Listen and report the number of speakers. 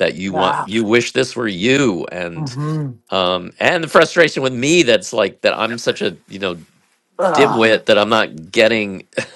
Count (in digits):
2